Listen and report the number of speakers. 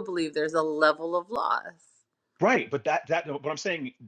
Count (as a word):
two